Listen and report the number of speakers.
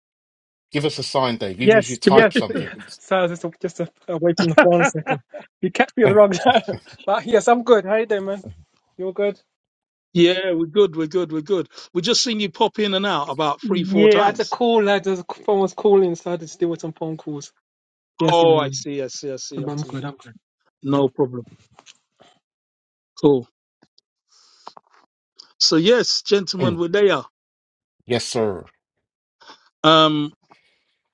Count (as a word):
three